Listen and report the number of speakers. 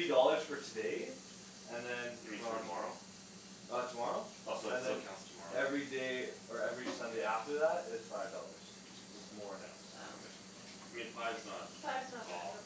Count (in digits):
3